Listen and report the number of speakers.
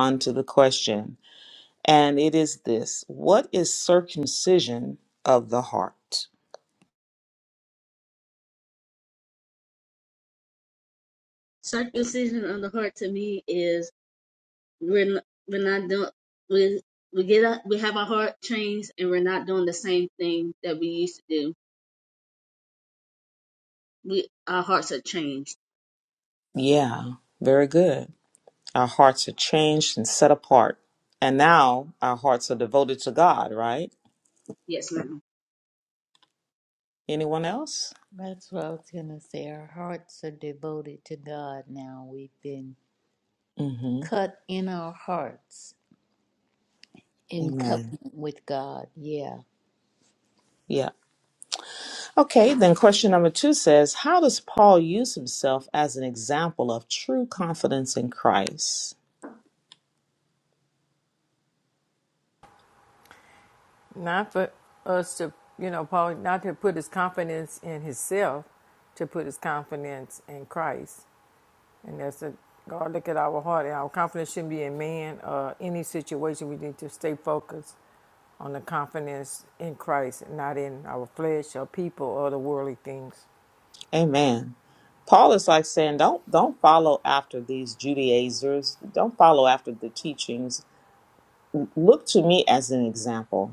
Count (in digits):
4